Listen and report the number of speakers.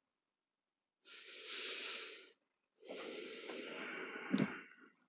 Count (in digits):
0